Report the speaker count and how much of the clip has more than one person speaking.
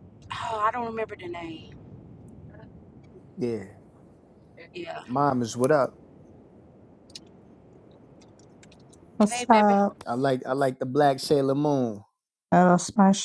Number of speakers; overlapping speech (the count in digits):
3, about 4%